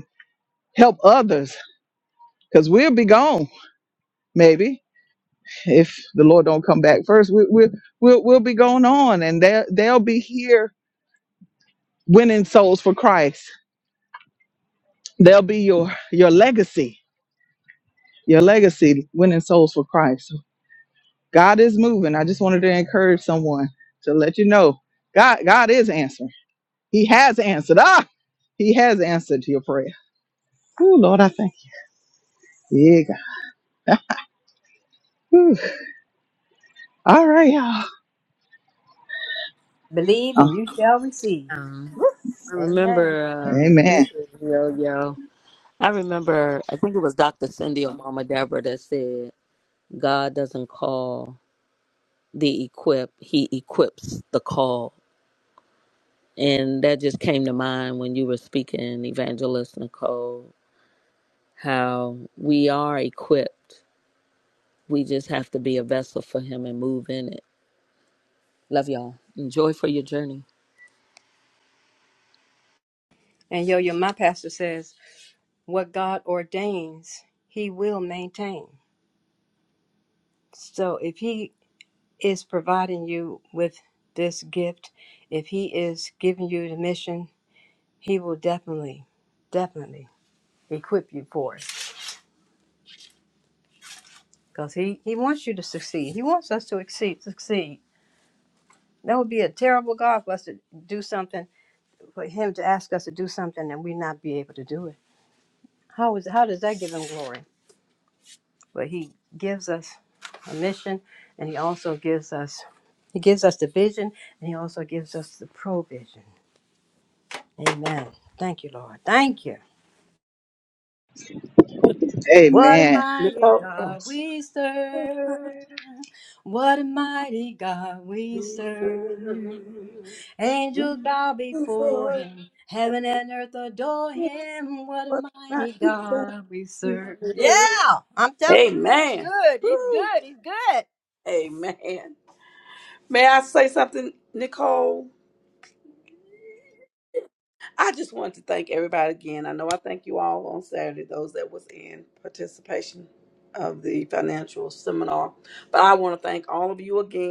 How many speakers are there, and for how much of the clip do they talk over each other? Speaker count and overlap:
four, about 3%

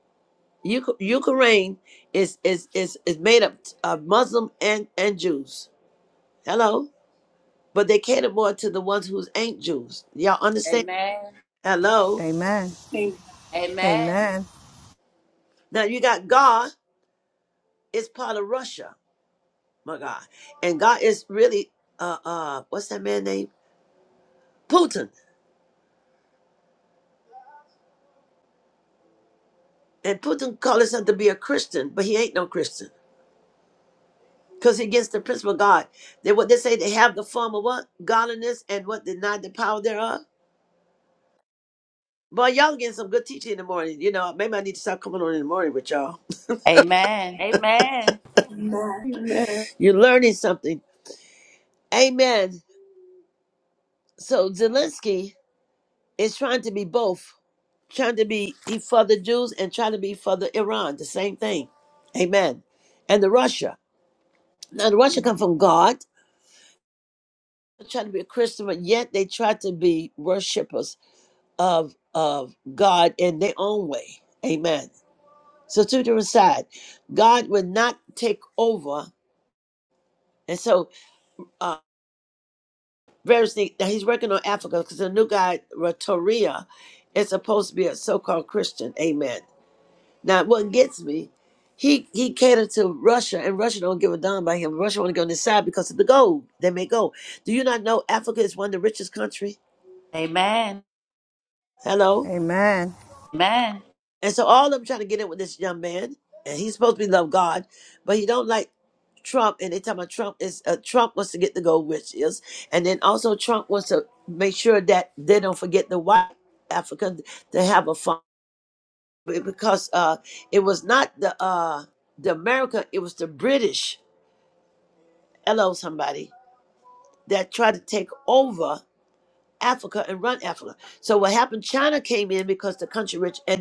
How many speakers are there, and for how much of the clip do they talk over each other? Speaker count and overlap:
four, under 1%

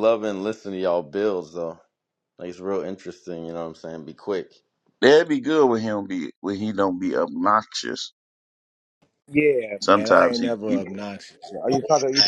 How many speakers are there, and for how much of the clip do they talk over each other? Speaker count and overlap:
three, about 9%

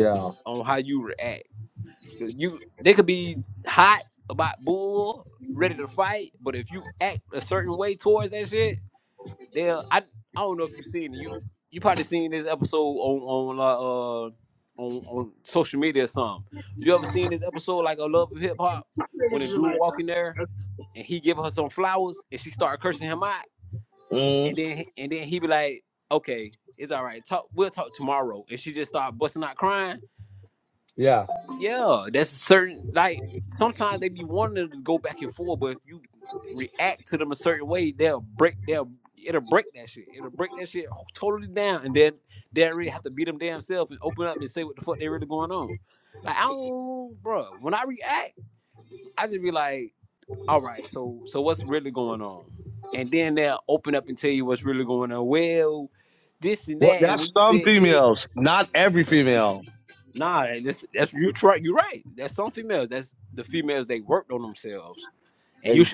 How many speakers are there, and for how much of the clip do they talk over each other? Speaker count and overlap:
two, about 2%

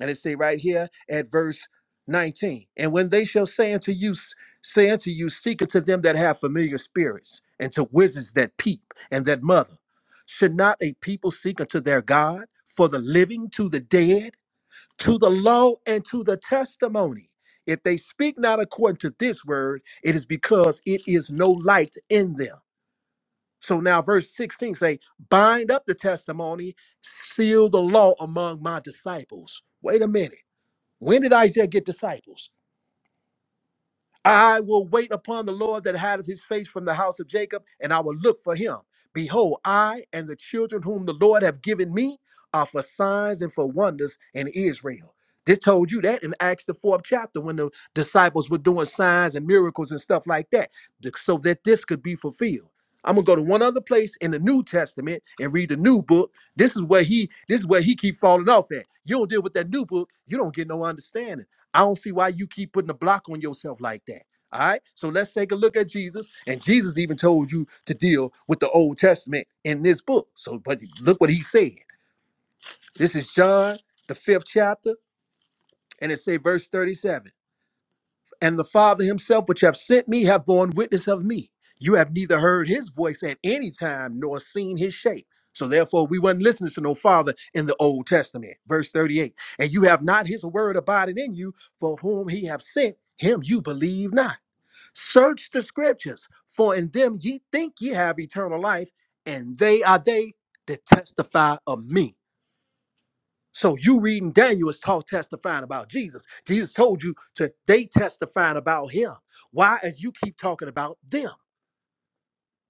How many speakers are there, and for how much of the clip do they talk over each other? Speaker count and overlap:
one, no overlap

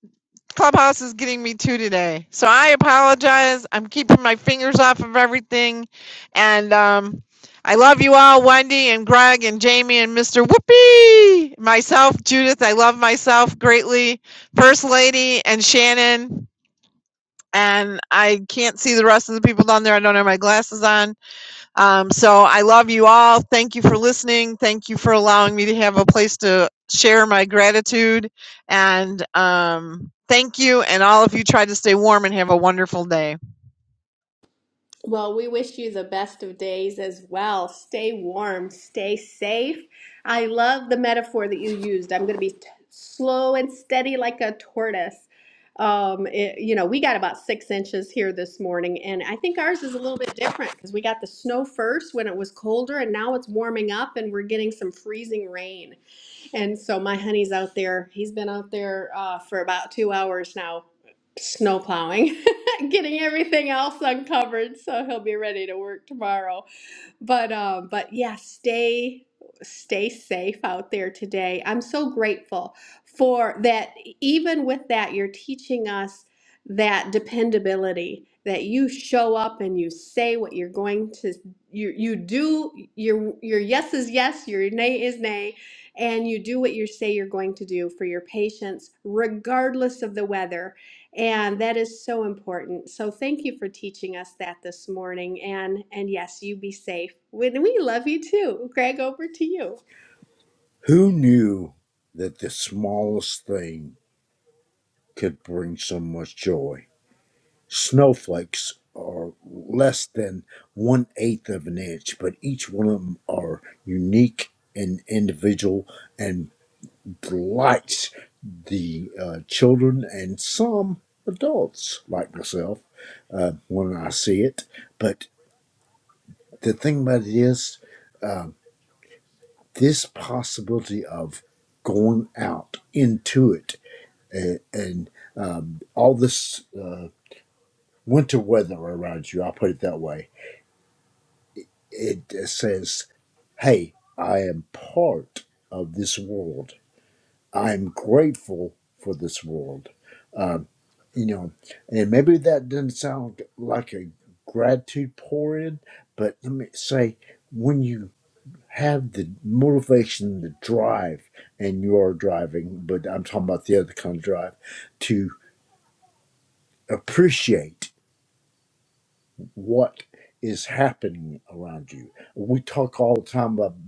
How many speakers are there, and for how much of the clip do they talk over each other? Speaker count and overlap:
three, no overlap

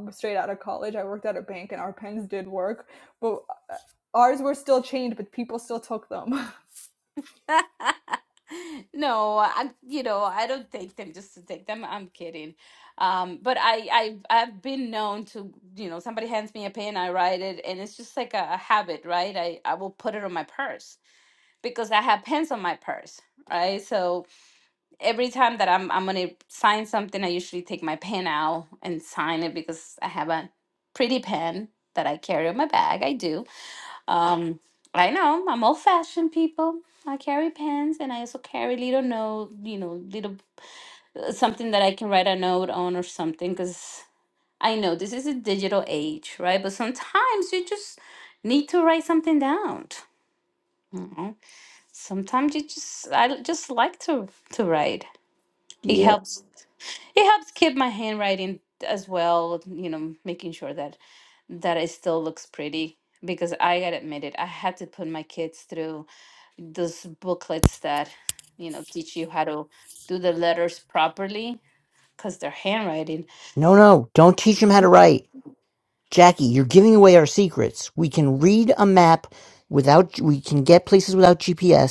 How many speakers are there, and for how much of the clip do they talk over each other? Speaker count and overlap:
three, under 1%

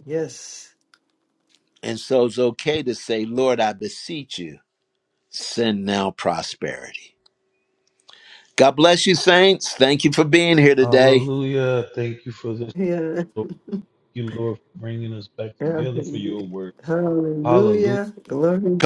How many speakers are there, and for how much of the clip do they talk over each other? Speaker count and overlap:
three, about 9%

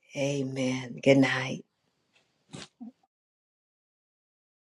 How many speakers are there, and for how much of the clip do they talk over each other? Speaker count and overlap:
one, no overlap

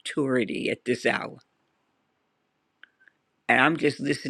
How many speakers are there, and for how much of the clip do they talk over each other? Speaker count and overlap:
one, no overlap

